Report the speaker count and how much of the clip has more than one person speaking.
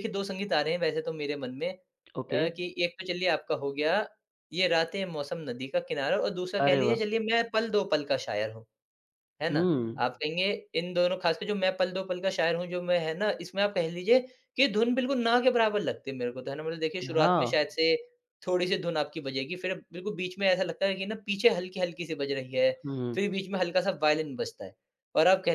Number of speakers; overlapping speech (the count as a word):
two, about 7%